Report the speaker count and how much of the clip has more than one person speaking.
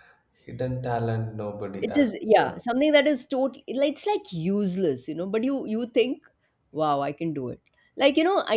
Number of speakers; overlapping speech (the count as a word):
two, about 9%